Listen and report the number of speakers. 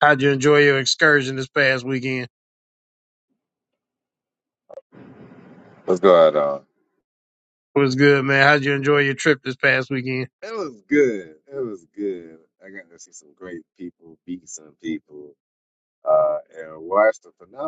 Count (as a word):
two